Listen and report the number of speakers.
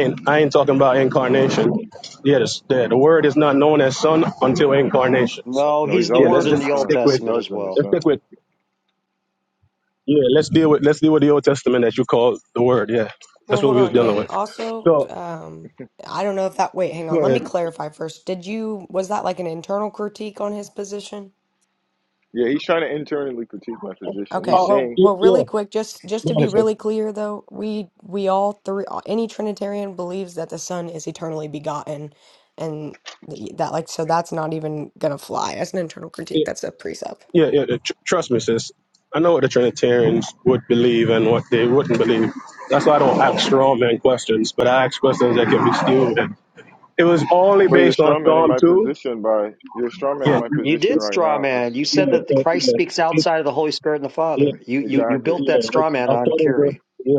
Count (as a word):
four